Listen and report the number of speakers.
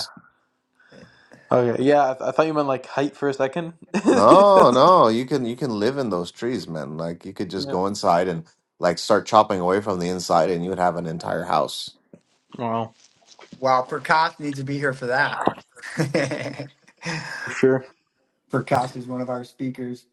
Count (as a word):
three